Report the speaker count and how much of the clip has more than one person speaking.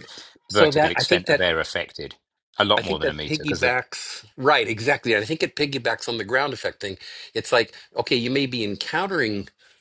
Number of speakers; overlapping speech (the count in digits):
2, about 19%